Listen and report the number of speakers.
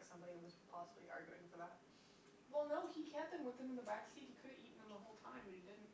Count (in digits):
2